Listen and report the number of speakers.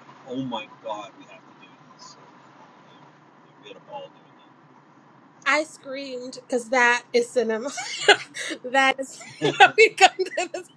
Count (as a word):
two